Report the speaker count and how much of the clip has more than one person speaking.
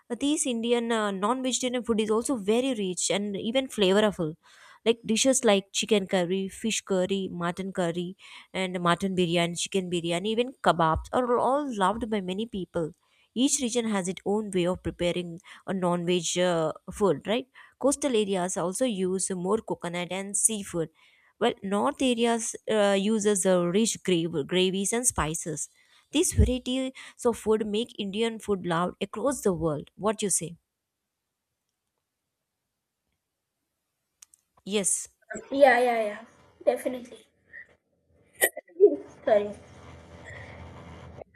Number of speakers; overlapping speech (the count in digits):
2, no overlap